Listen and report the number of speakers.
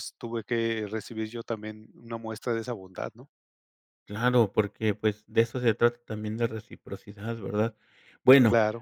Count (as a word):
two